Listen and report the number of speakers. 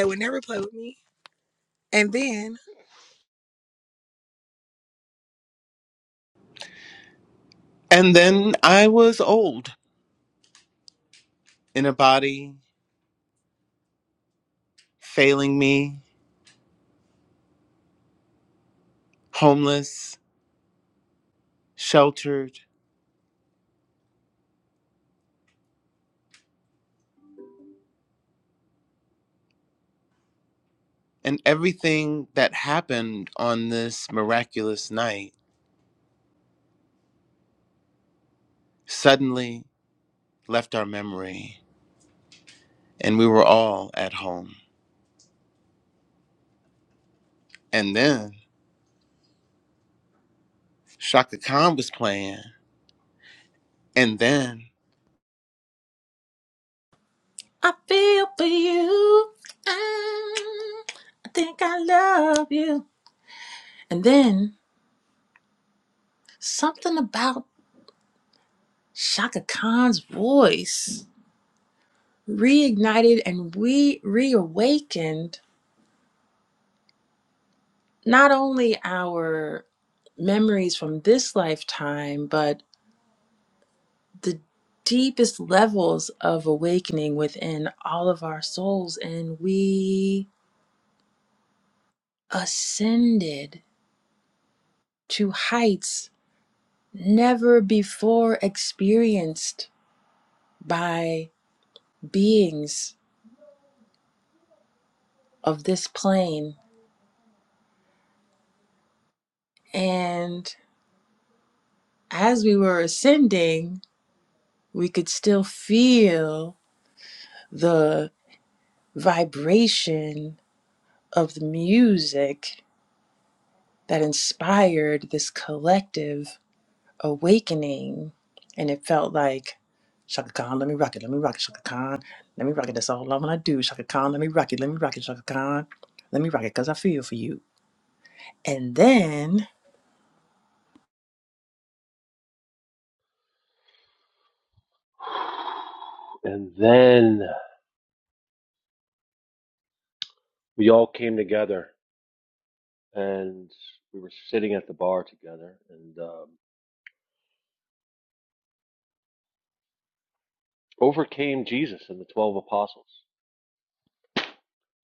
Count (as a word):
four